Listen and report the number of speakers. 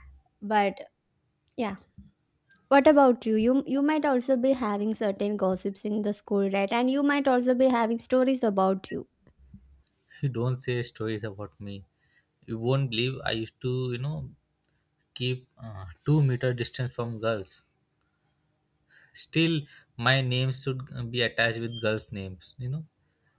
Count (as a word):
two